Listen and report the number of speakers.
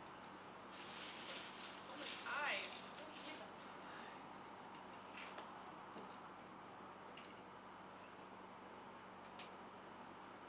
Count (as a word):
one